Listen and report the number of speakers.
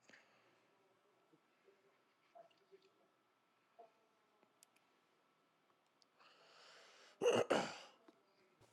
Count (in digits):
0